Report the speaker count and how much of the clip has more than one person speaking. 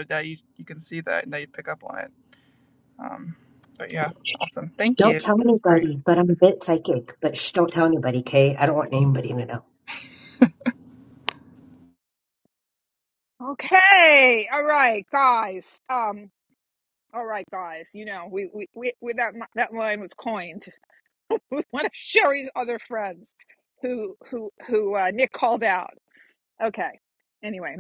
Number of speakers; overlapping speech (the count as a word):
three, about 2%